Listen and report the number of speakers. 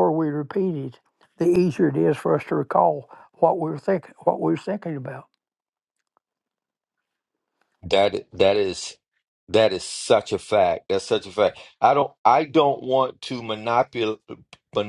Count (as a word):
two